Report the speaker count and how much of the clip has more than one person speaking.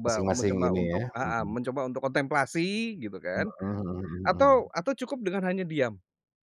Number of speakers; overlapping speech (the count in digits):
2, about 31%